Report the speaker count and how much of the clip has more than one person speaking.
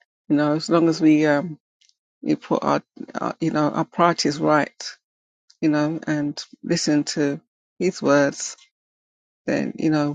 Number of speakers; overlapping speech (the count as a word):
one, no overlap